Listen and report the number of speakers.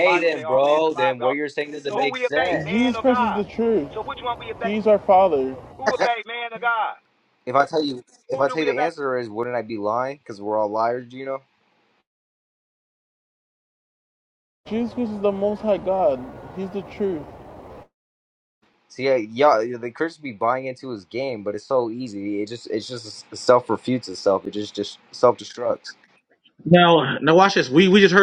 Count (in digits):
4